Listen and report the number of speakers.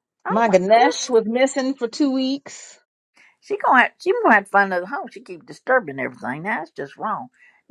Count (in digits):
2